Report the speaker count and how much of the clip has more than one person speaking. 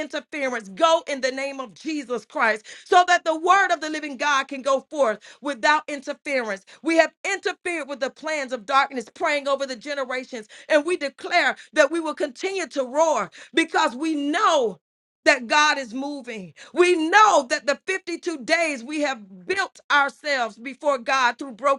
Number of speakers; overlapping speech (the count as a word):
one, no overlap